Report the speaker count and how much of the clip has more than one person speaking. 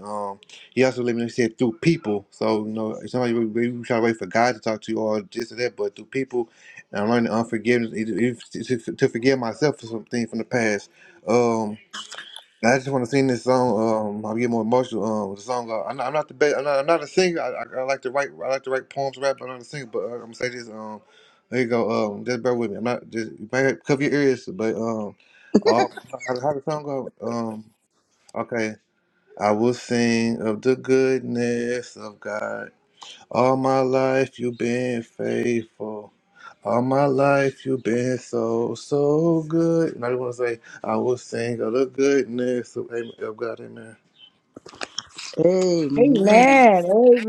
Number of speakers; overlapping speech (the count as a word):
three, about 1%